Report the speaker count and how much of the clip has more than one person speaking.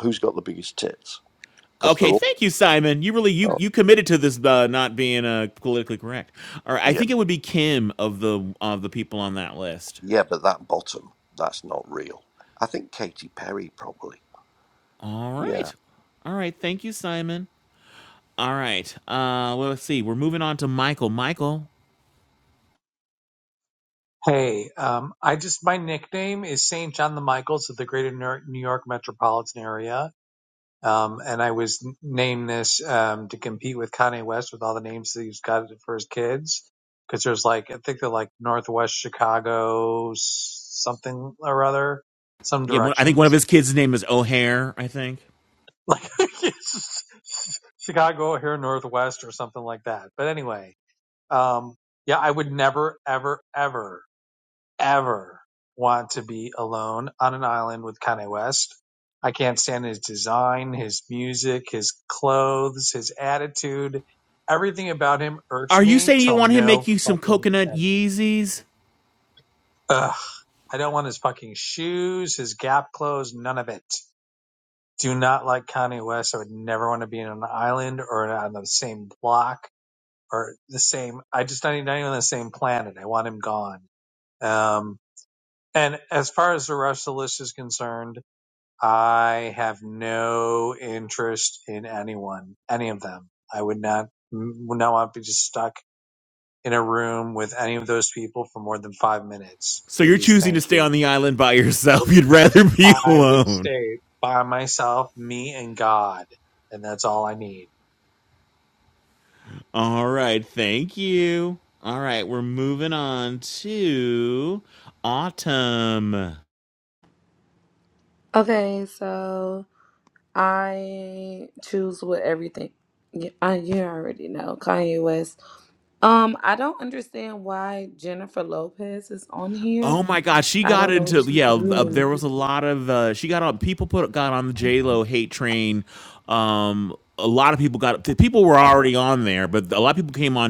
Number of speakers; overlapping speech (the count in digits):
4, about 5%